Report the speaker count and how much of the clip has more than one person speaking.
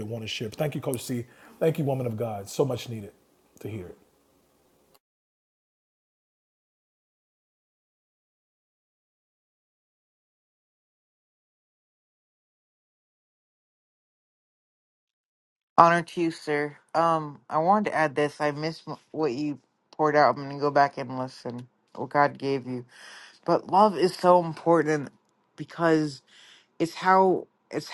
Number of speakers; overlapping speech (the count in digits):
2, no overlap